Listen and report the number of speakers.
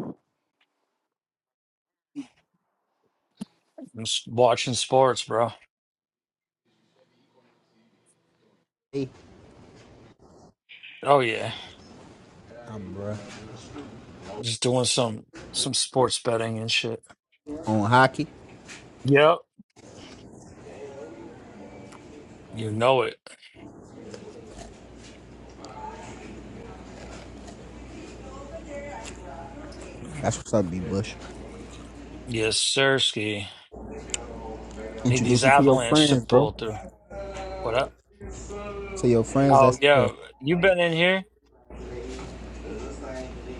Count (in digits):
2